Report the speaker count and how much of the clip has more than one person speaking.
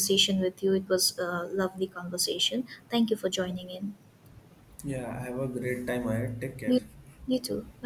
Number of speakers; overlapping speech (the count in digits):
2, about 1%